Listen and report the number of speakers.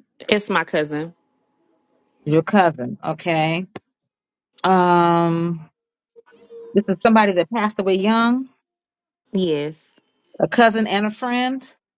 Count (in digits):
2